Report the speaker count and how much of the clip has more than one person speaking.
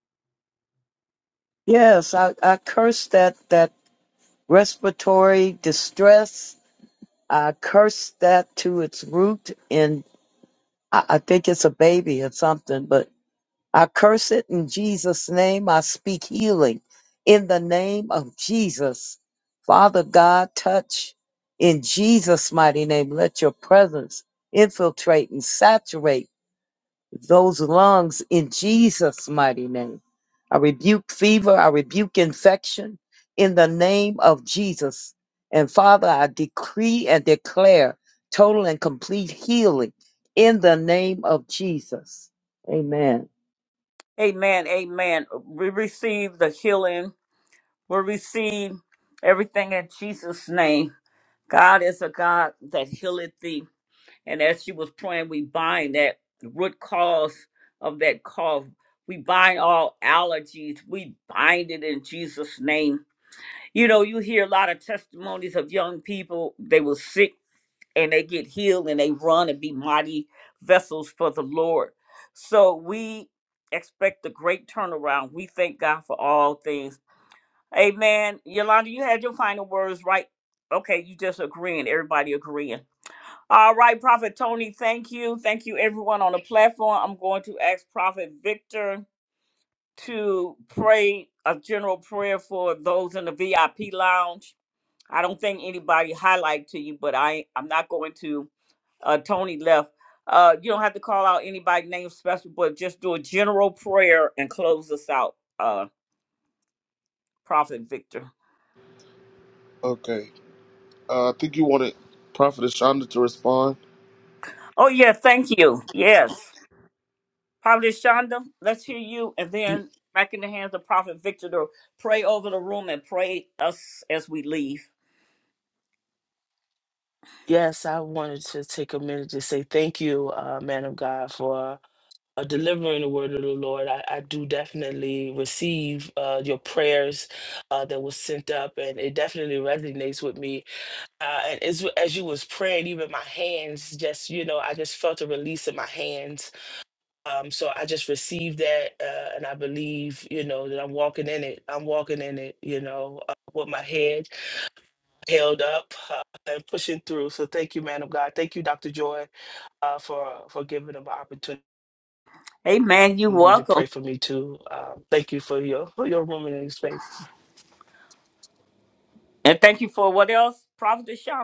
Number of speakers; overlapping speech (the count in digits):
4, under 1%